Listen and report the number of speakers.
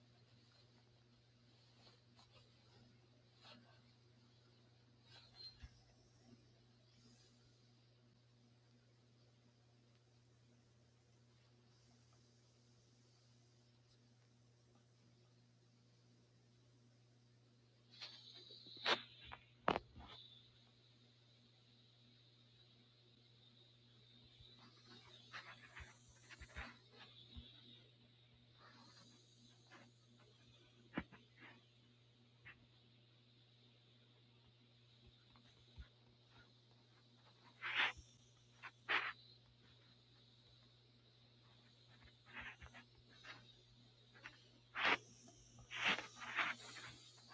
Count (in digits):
0